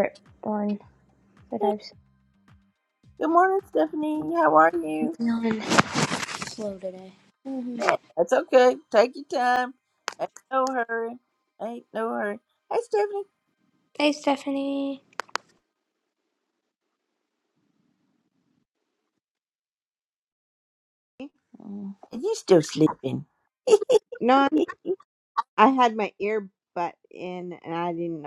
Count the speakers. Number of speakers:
3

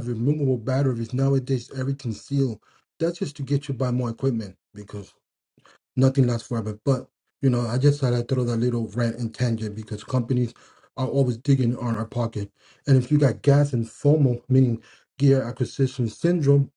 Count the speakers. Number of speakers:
1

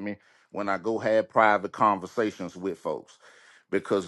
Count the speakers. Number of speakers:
1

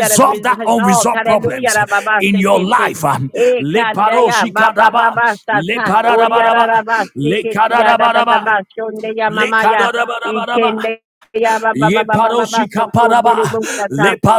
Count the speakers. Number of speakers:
2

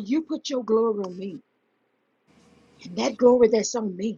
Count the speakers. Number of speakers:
1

